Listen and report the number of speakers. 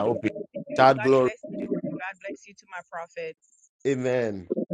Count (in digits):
2